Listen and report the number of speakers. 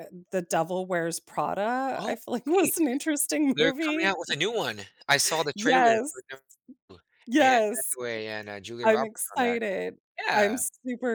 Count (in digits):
2